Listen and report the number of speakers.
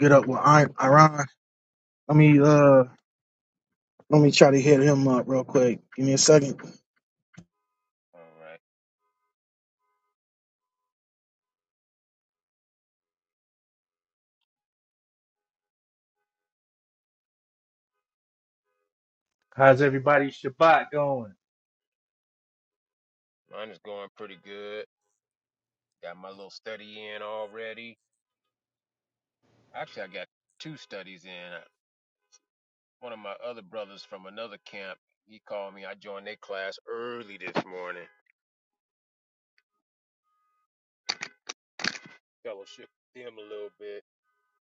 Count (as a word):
three